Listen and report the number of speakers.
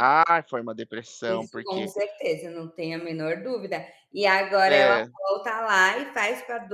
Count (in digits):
2